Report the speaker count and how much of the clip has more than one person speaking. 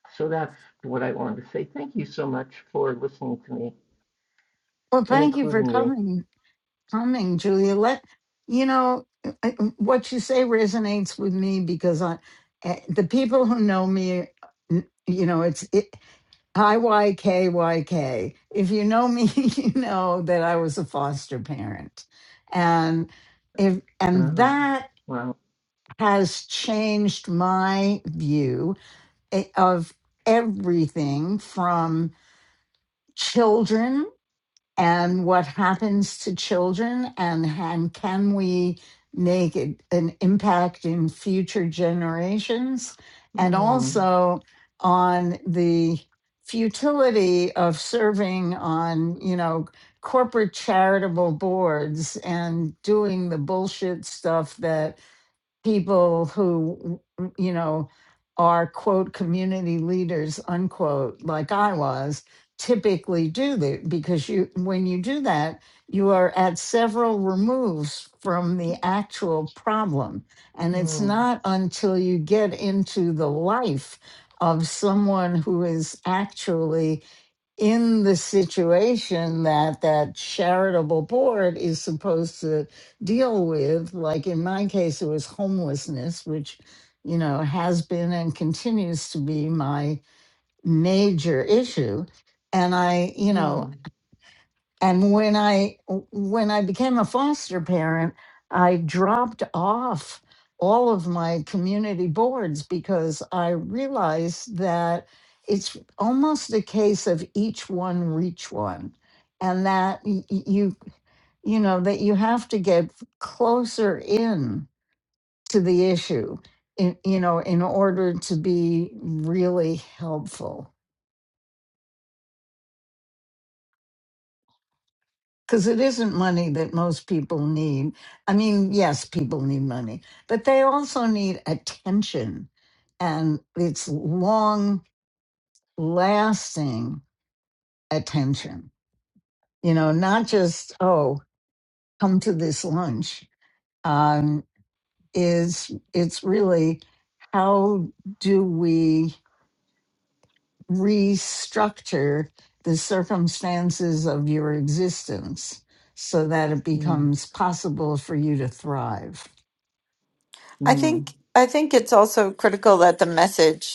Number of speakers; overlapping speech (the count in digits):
3, about 2%